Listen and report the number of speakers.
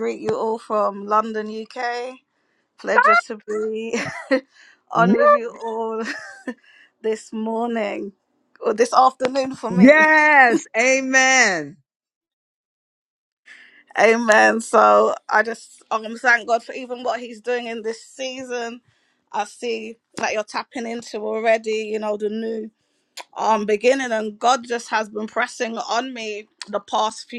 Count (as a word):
two